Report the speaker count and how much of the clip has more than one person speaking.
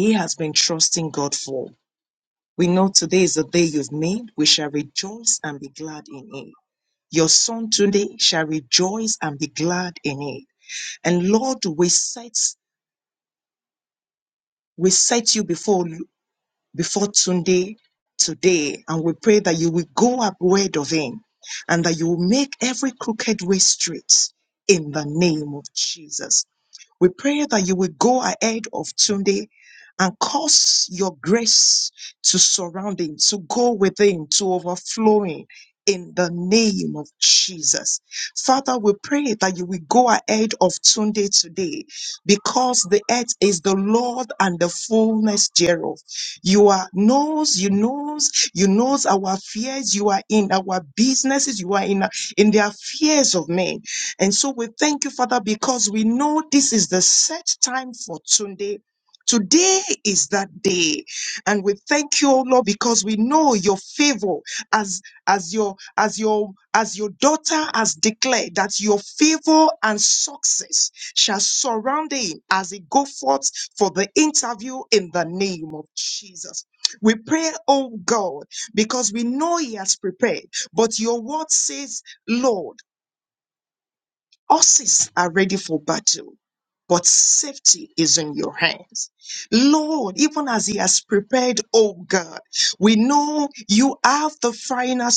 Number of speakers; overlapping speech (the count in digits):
1, no overlap